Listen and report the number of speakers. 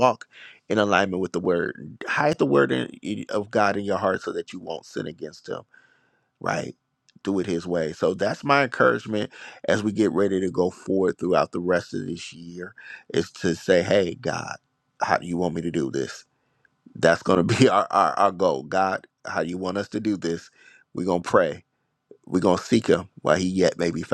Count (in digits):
1